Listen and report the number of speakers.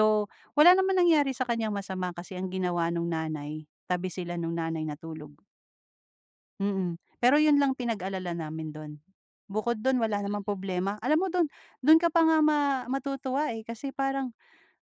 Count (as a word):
one